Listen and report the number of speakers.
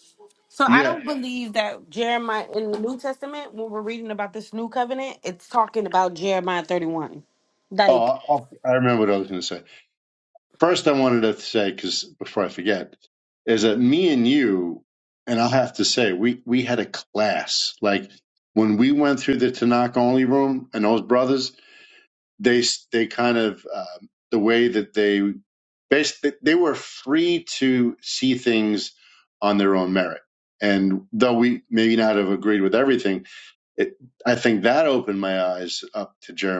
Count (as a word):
two